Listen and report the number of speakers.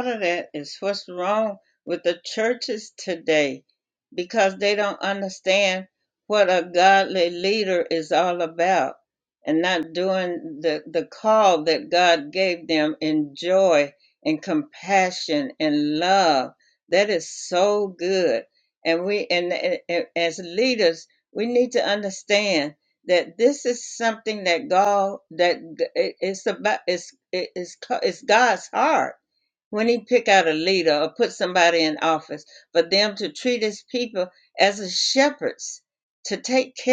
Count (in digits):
1